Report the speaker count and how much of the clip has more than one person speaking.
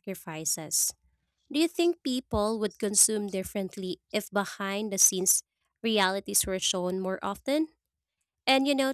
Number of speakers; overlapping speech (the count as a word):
one, no overlap